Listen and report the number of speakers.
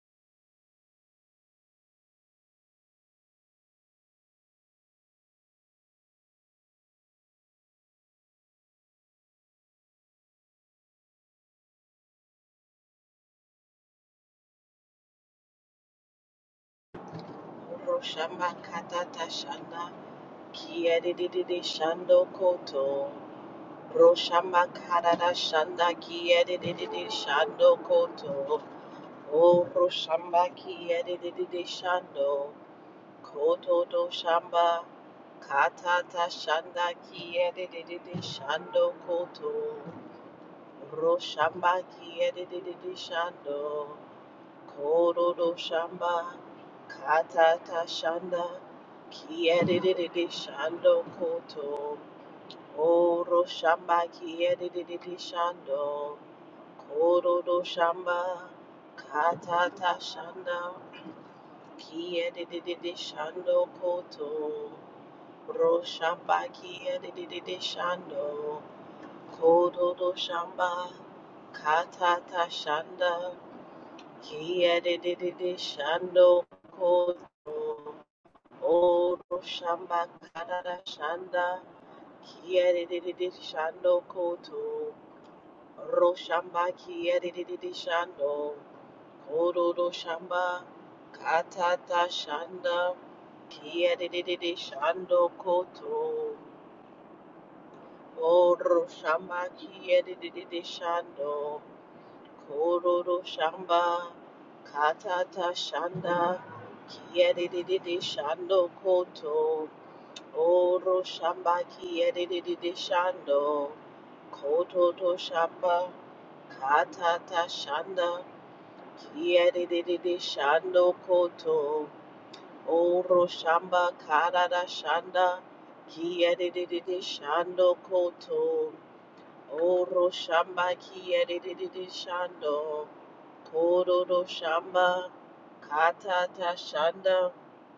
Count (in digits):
1